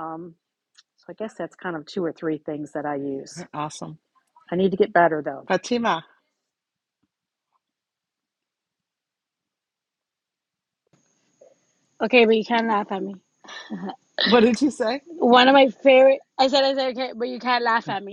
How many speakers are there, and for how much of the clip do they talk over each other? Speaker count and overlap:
3, no overlap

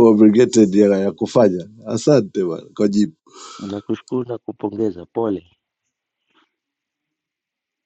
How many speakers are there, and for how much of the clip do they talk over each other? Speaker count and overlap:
2, no overlap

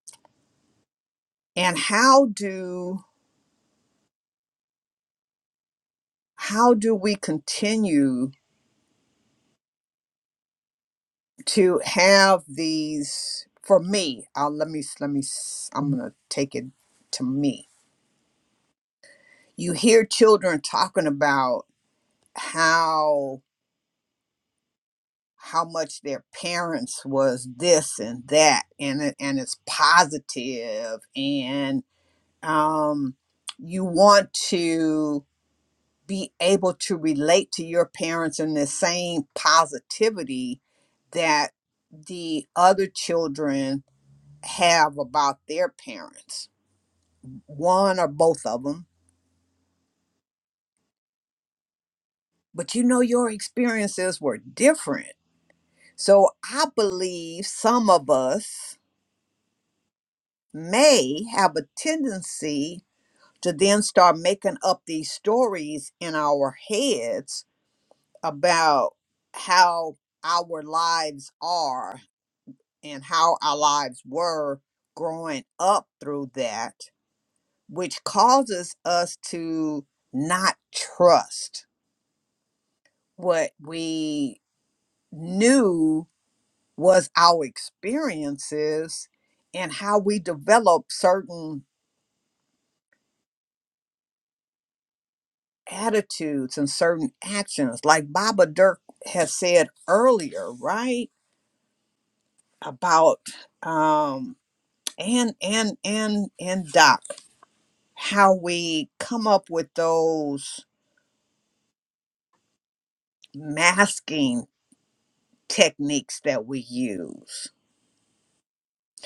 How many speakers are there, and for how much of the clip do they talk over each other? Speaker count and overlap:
1, no overlap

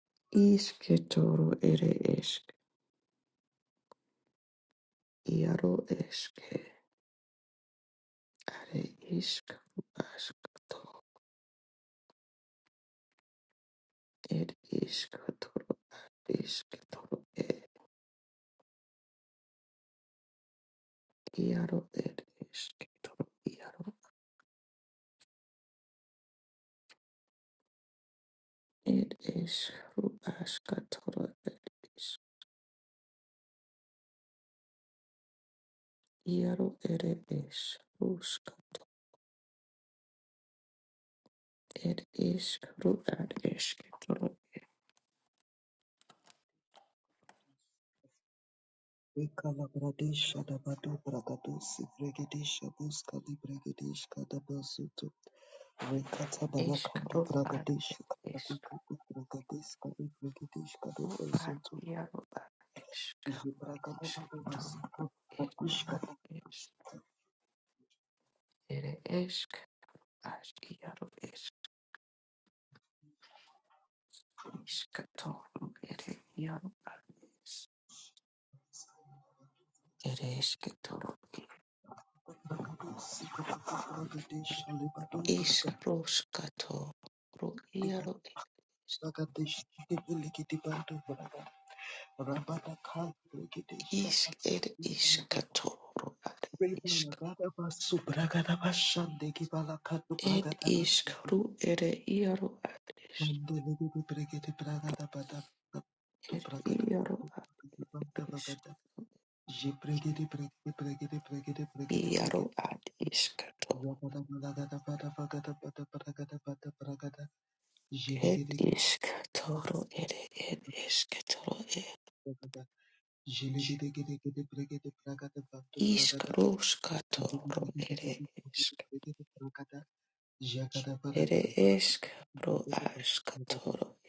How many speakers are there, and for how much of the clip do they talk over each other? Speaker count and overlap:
2, about 9%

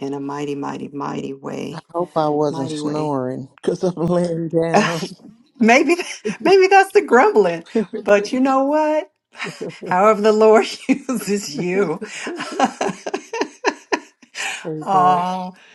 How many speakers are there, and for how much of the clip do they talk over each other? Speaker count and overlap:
2, about 7%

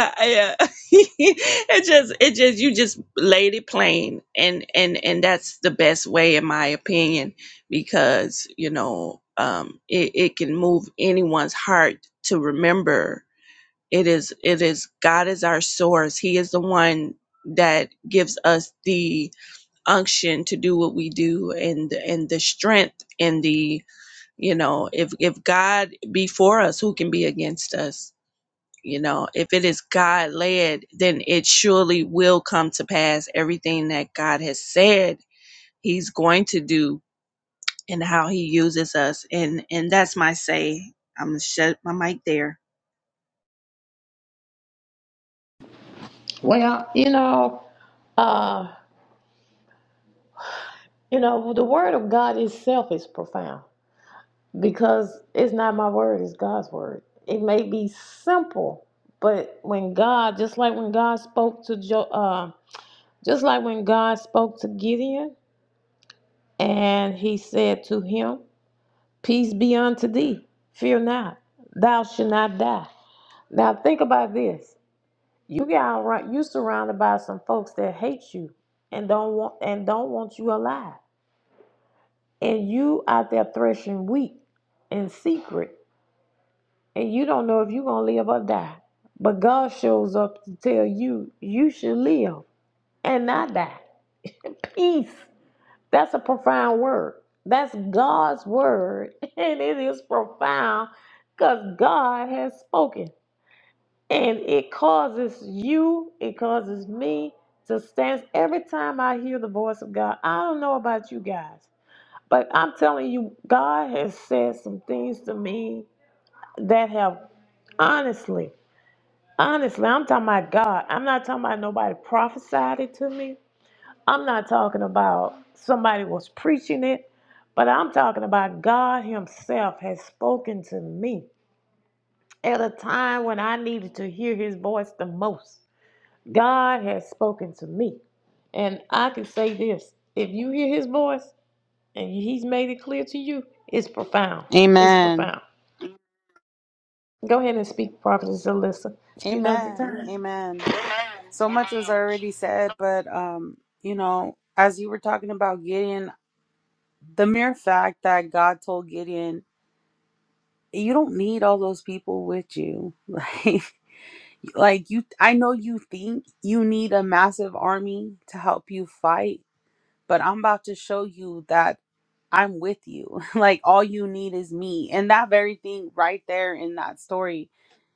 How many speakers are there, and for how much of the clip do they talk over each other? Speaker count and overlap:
3, about 1%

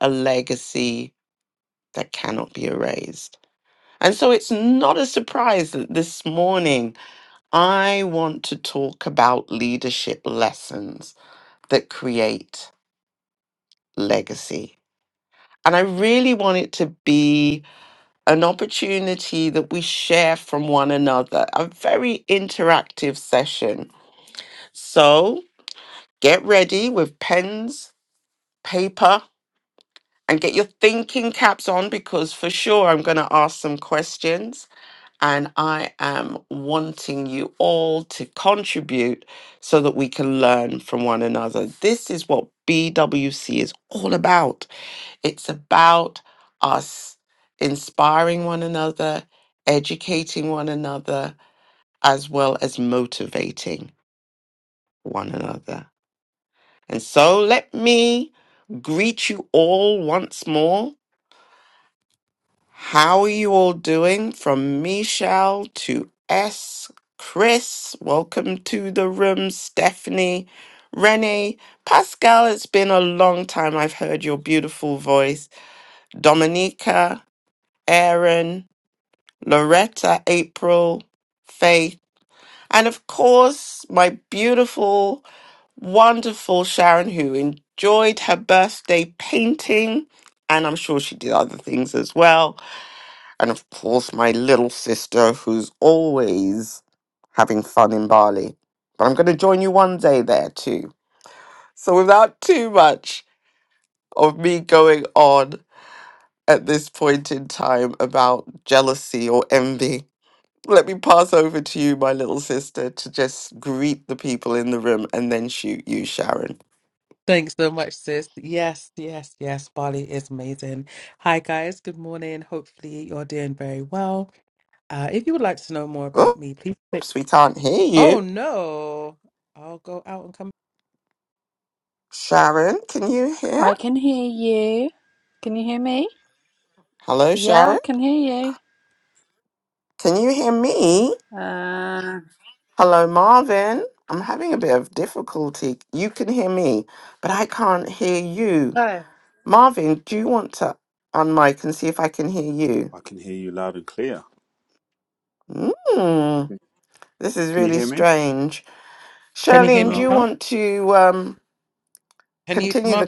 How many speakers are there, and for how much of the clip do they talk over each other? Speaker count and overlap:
4, about 2%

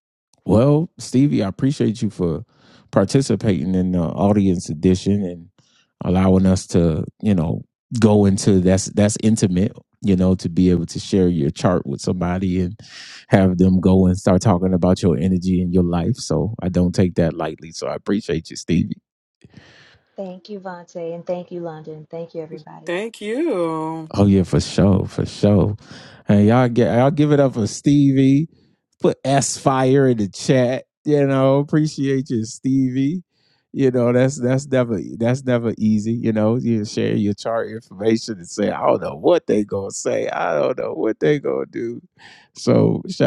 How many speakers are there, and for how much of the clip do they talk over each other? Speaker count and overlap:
3, under 1%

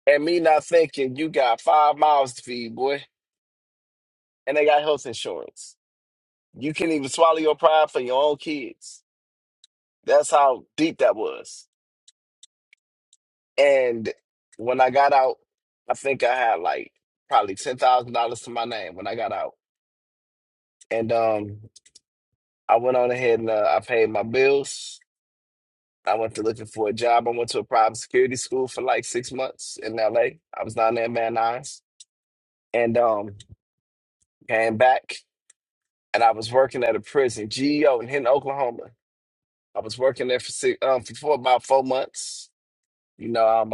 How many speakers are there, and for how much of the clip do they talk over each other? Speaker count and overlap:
1, no overlap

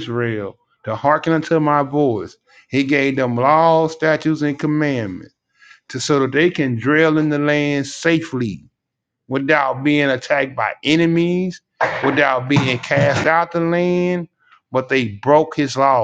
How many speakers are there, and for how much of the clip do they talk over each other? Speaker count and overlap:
1, no overlap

